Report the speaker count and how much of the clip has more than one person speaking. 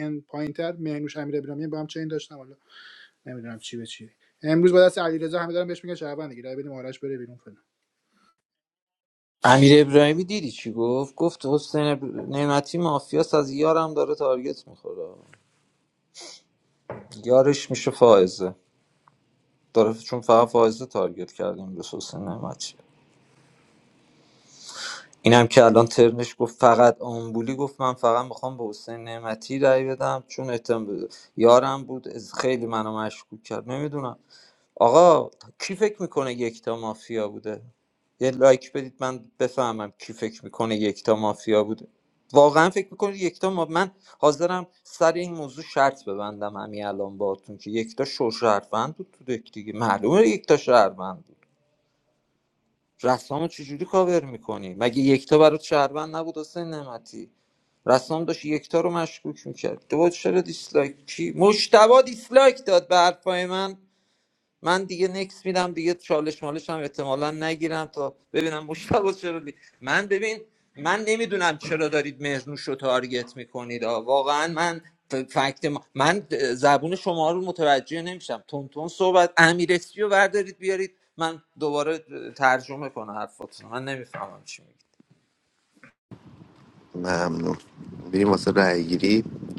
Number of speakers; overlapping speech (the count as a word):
three, no overlap